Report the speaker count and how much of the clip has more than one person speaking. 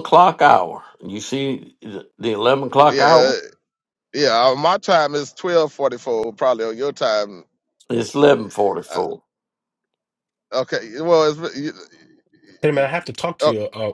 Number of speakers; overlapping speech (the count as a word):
three, about 5%